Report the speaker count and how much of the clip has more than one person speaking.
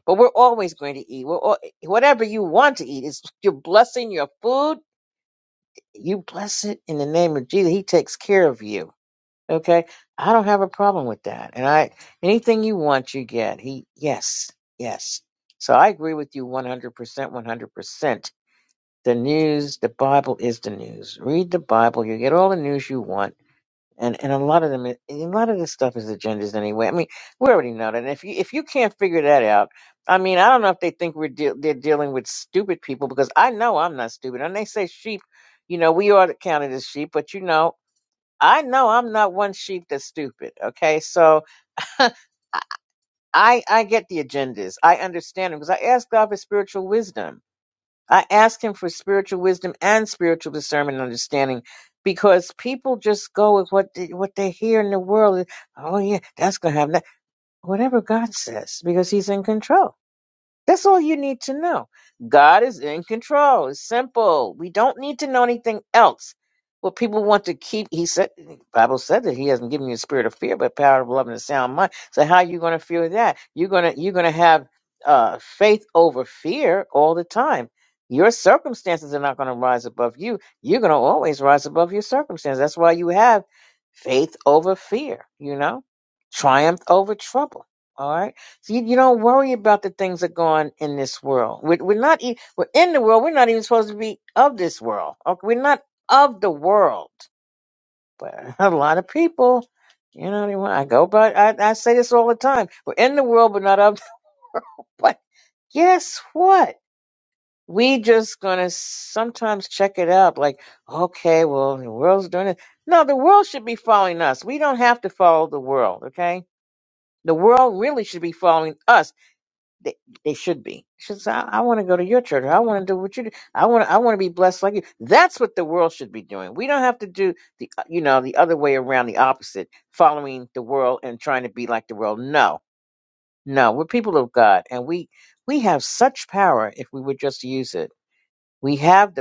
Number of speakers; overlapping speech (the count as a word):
one, no overlap